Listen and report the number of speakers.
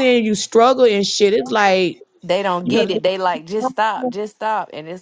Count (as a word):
two